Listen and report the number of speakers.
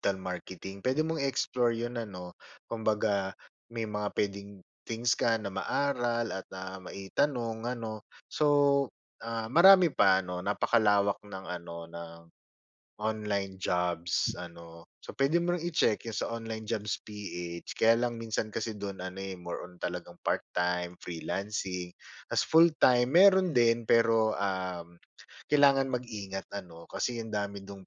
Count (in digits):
1